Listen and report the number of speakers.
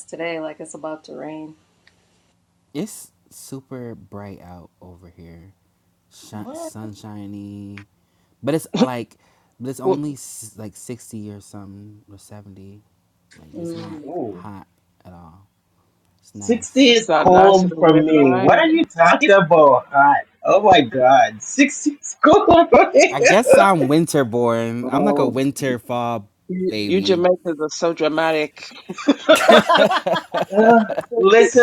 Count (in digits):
4